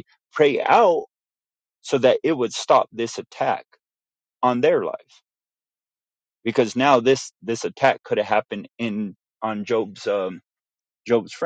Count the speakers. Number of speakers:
1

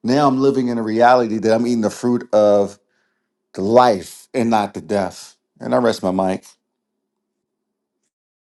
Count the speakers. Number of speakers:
1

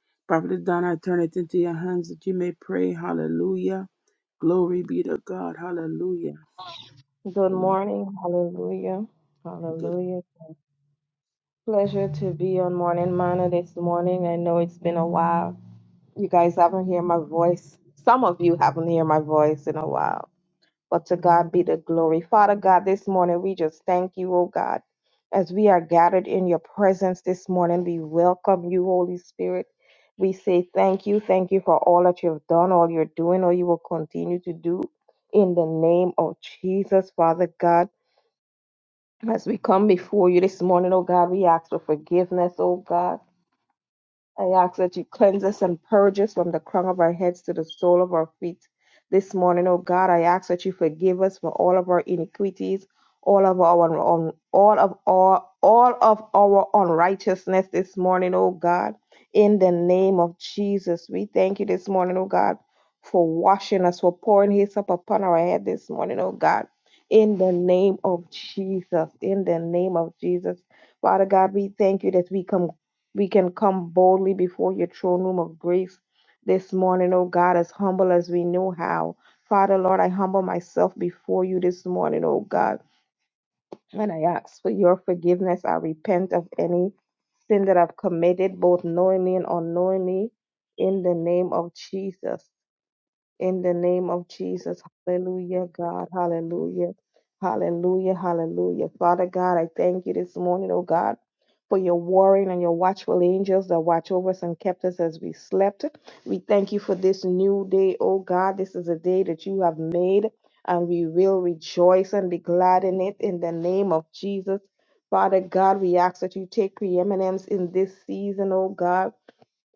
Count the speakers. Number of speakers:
2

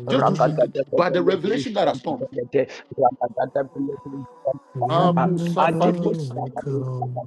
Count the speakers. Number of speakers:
3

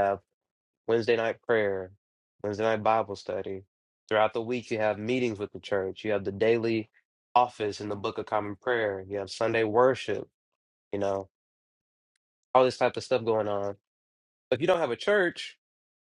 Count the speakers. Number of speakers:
1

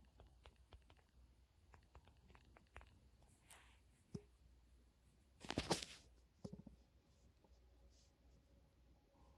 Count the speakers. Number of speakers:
0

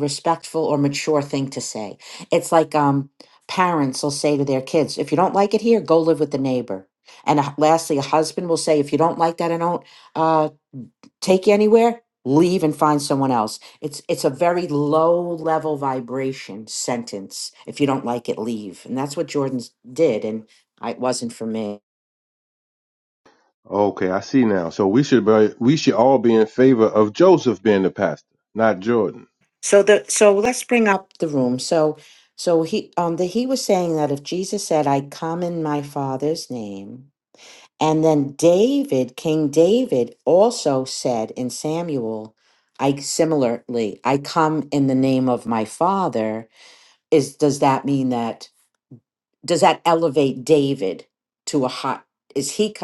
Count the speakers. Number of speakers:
2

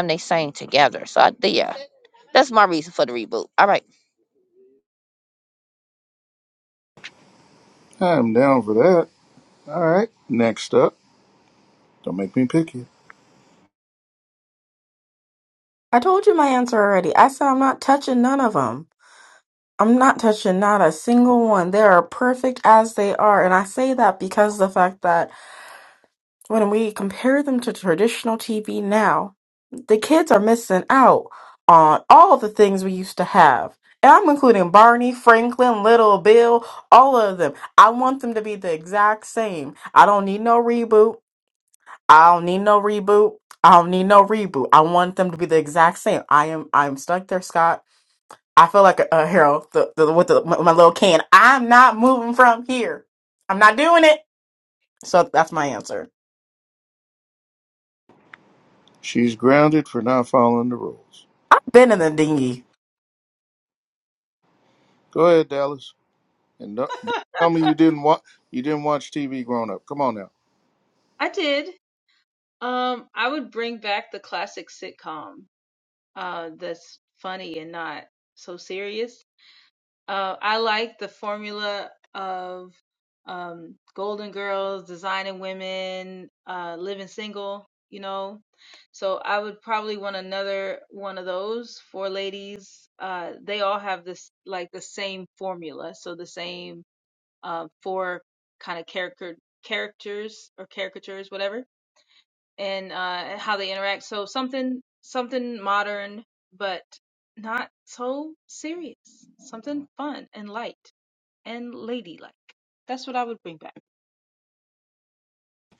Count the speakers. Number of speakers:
4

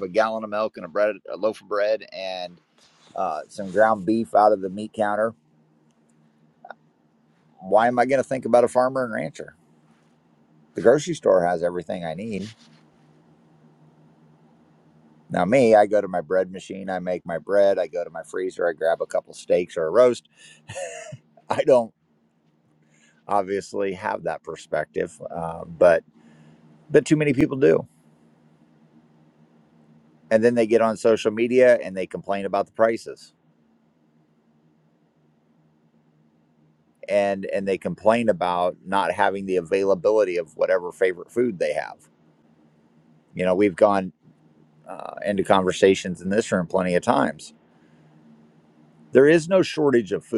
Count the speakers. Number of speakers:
1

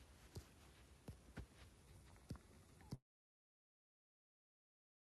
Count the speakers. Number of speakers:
0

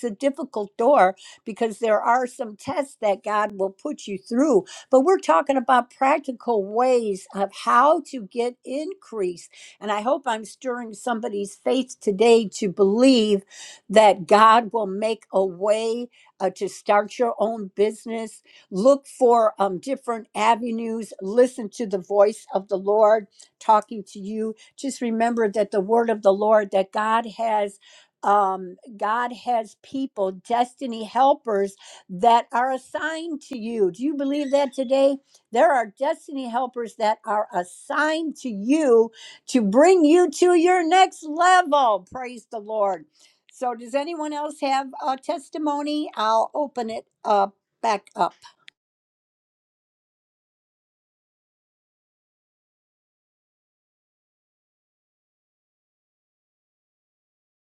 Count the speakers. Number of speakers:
1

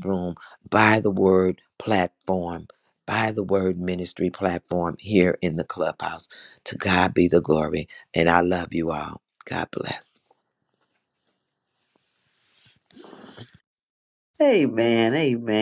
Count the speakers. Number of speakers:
2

